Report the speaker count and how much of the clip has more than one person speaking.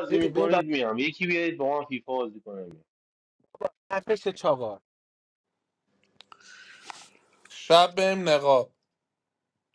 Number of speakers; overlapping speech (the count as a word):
three, about 5%